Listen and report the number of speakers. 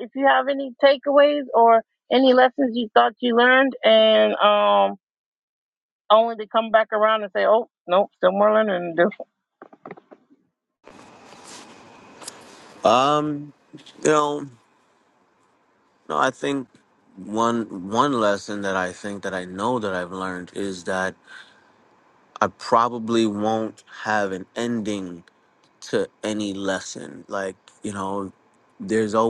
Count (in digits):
2